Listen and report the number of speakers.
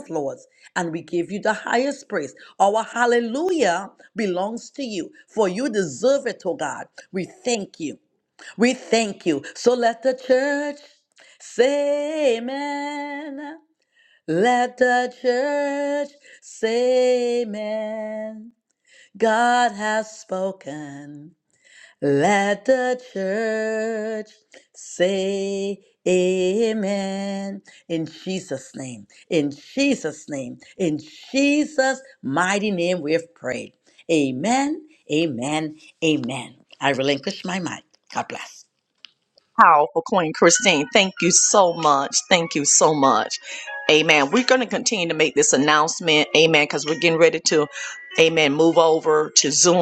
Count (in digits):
2